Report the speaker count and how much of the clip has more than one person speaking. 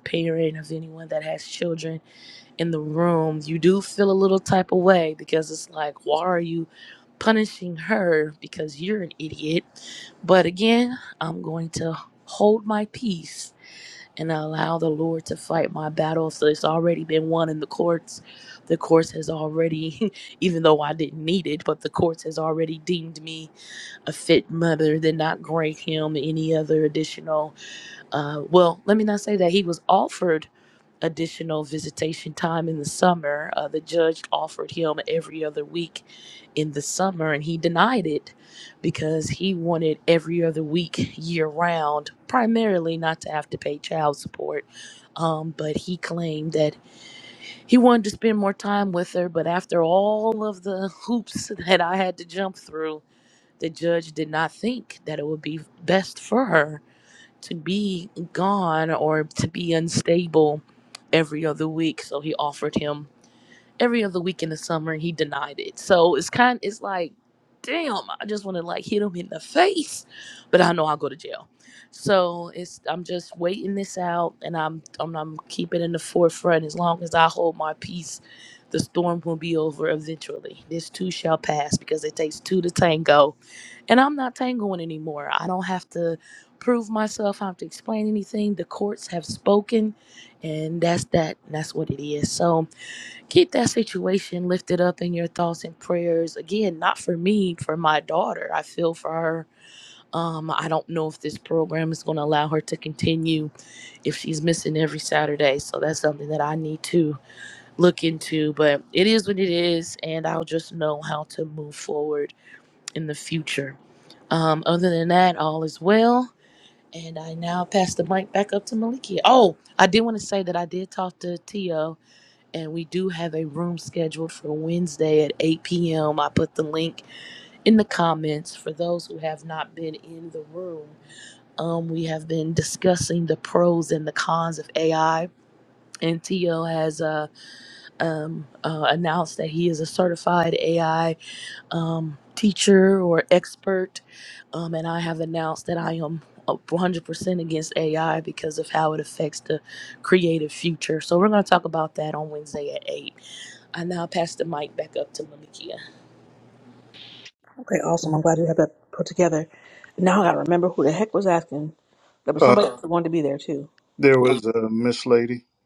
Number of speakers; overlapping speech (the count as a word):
three, under 1%